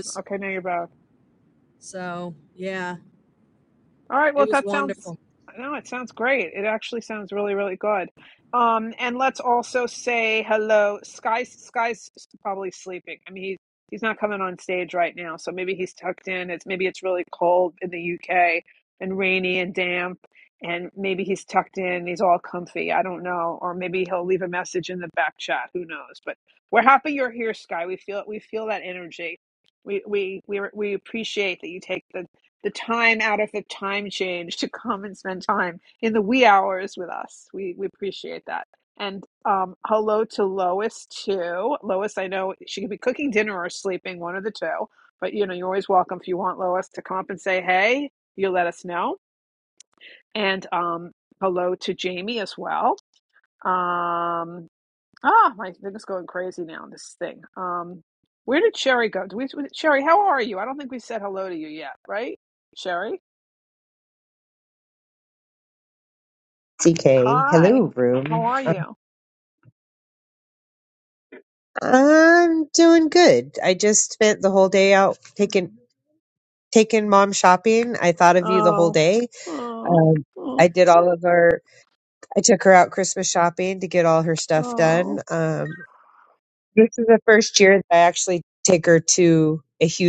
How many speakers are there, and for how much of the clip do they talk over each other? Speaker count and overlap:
three, about 3%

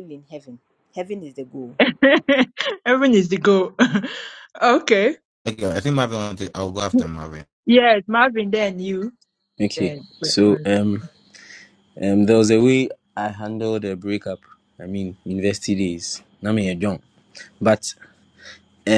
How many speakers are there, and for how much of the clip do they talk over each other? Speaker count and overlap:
four, about 3%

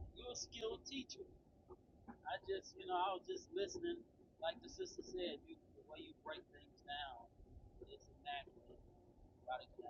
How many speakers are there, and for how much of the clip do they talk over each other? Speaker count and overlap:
one, no overlap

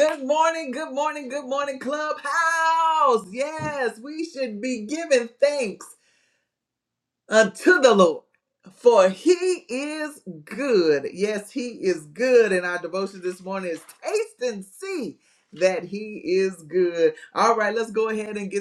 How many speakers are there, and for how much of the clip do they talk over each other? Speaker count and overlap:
one, no overlap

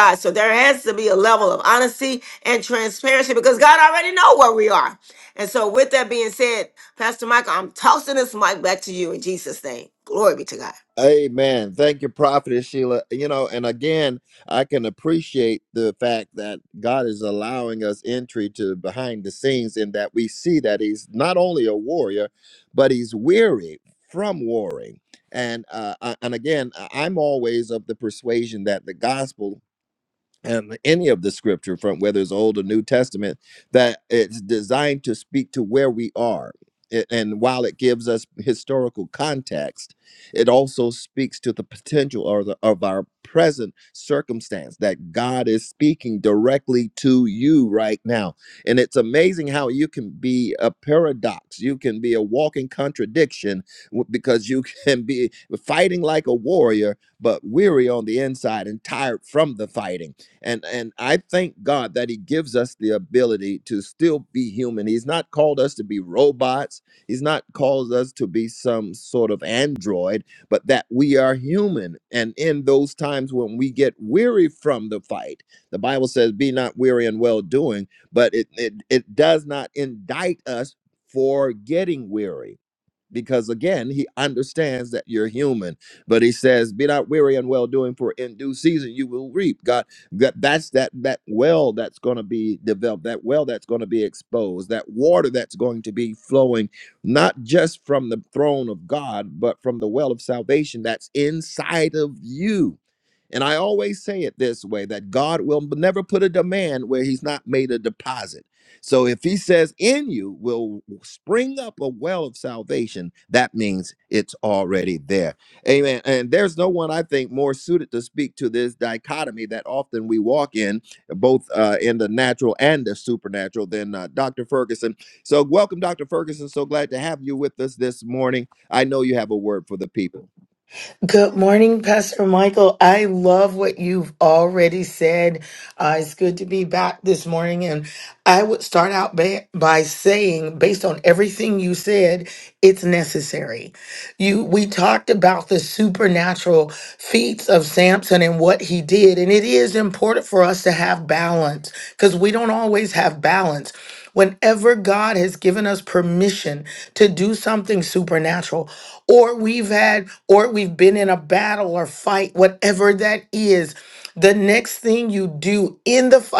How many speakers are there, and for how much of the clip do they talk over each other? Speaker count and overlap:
three, no overlap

